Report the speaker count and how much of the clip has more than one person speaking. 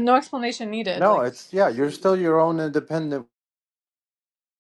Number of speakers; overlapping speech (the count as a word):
two, about 10%